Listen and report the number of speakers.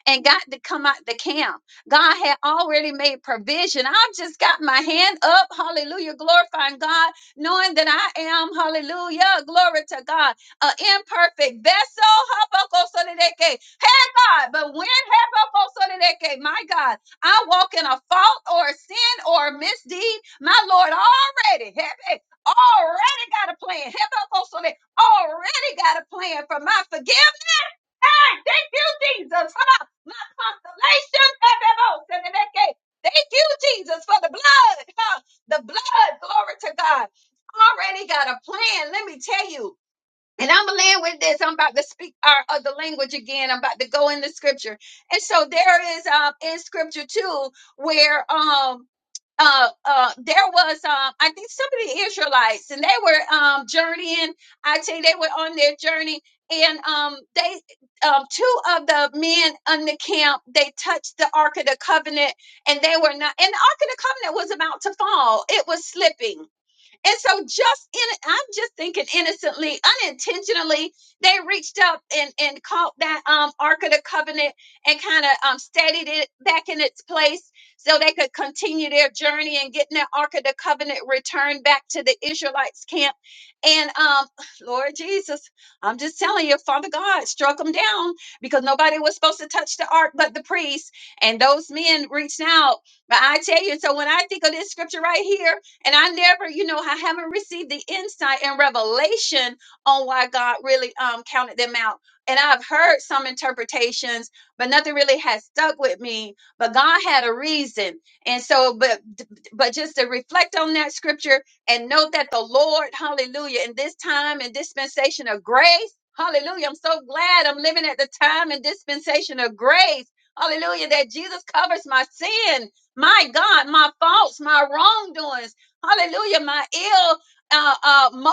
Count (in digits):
1